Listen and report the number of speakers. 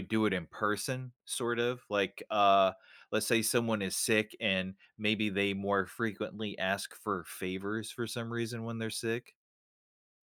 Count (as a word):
one